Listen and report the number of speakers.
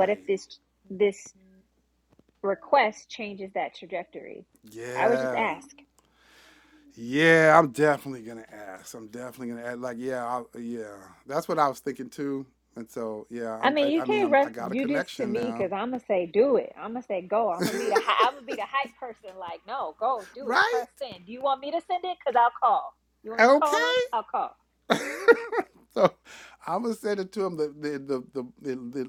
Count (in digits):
2